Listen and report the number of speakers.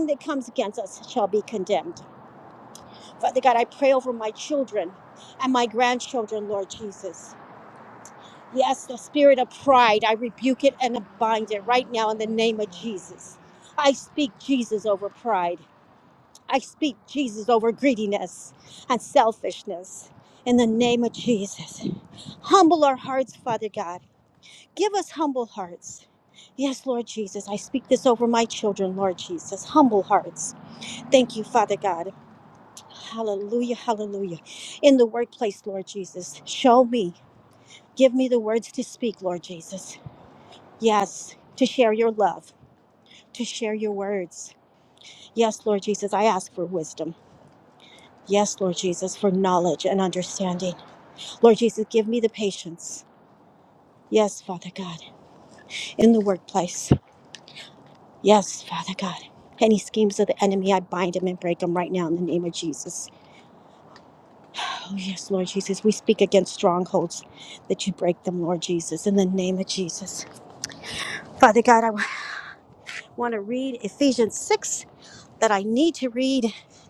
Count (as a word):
one